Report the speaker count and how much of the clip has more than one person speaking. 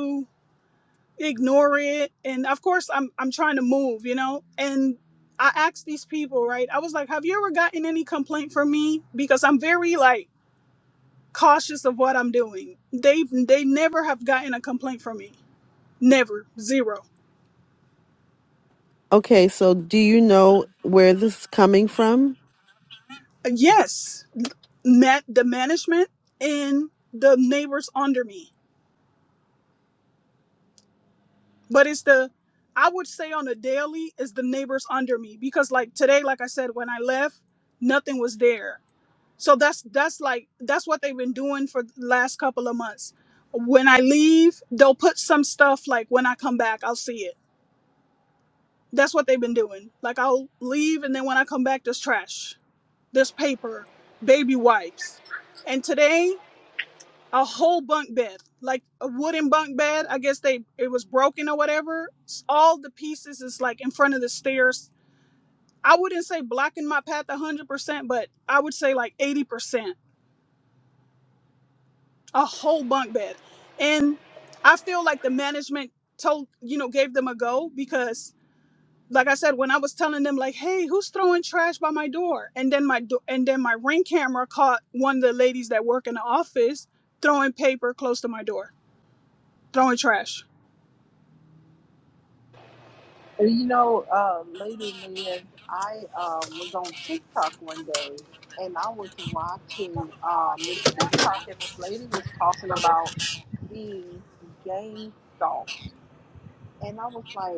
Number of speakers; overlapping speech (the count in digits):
3, no overlap